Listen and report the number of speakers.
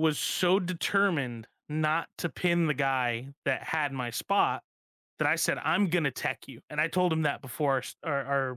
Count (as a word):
one